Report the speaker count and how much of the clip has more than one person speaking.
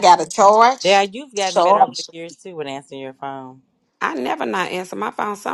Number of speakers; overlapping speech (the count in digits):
3, about 12%